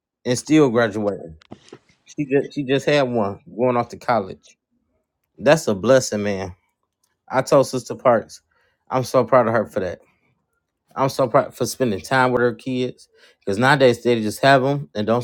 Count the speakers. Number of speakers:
one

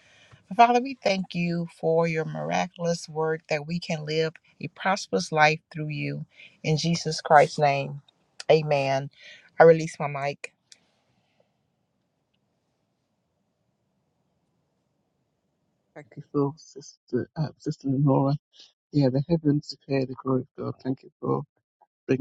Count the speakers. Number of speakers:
two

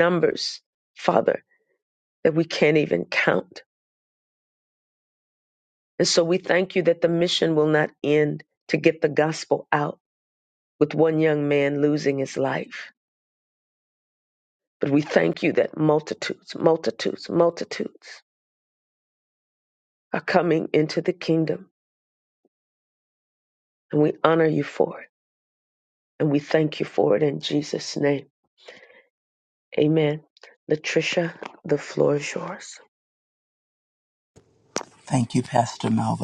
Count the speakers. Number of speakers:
two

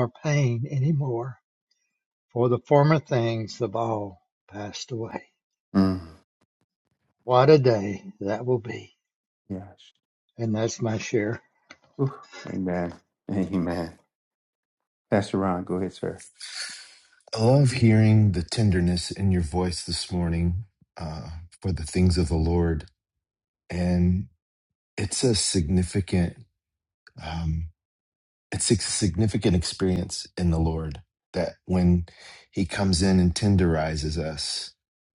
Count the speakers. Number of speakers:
three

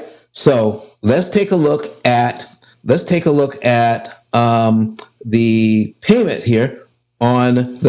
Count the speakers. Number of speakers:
one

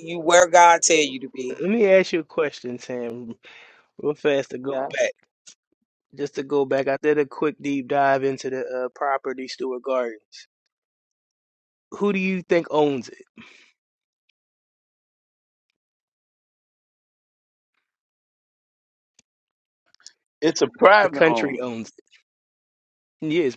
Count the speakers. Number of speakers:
three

